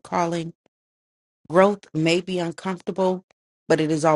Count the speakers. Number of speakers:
one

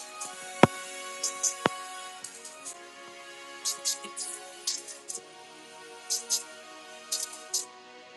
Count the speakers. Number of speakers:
zero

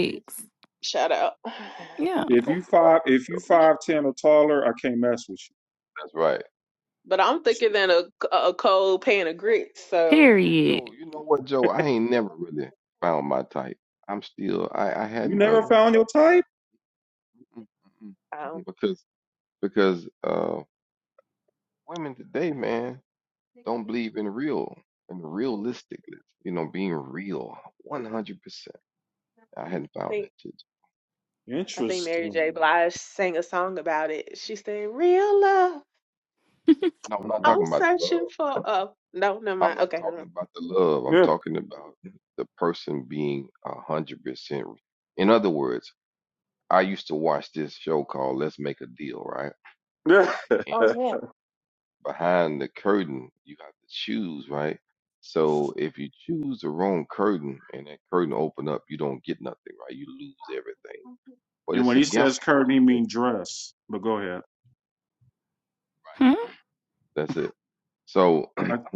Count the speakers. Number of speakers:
four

